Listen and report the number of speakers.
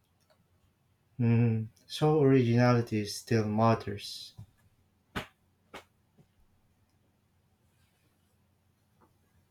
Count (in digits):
1